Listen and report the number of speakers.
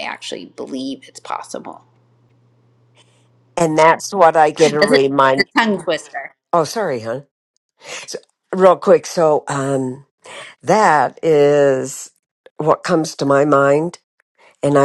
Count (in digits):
2